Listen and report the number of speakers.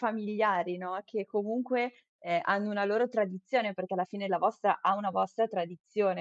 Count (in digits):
1